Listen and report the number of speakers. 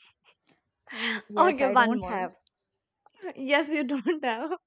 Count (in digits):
2